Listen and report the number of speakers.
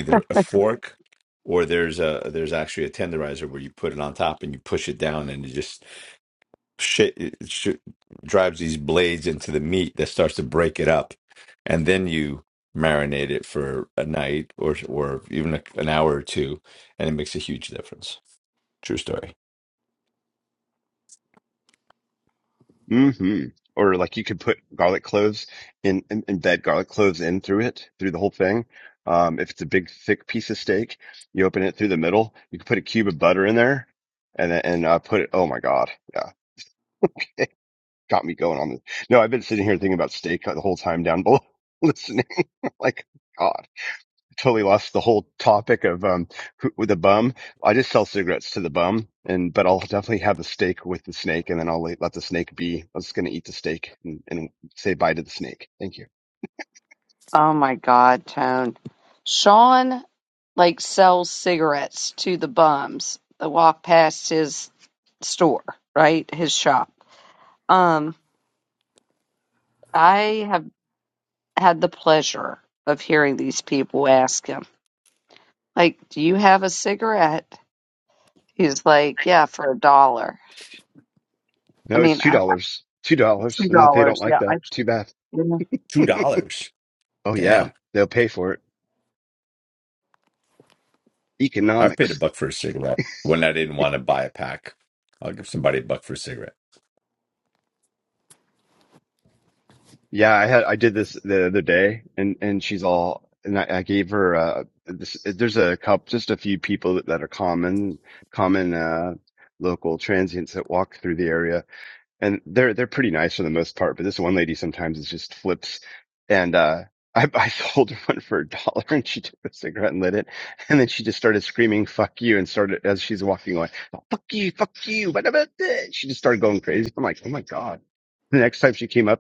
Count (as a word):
three